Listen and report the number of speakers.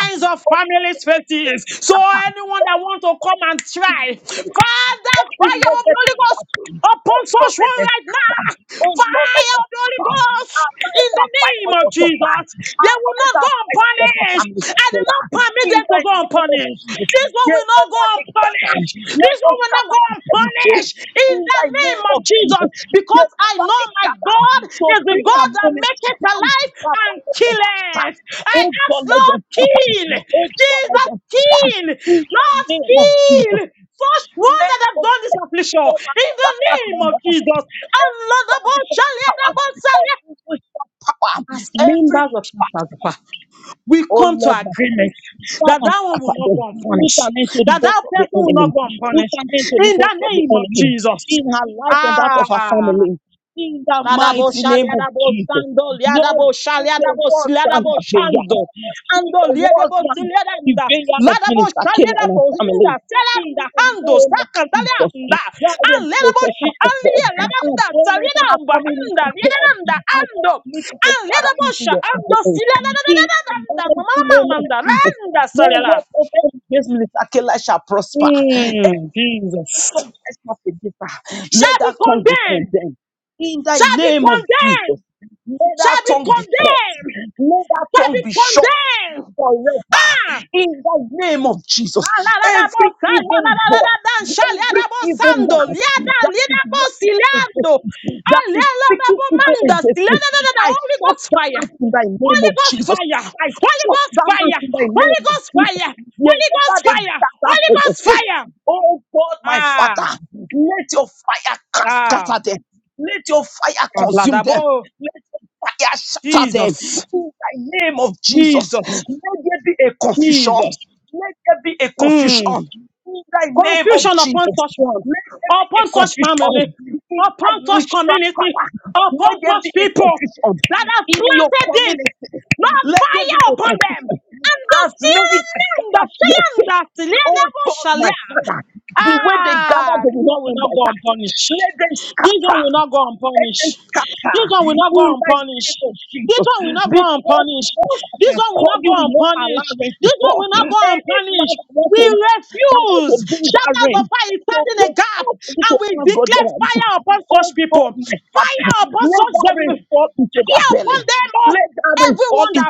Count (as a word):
two